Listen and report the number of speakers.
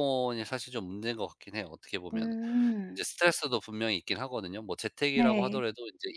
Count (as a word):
two